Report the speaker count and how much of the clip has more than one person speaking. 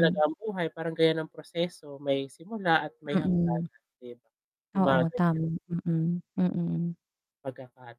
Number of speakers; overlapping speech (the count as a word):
two, about 16%